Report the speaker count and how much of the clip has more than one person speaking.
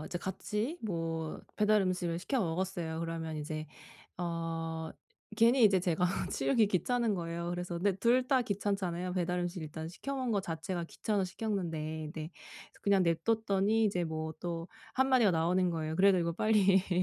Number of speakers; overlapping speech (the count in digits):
1, no overlap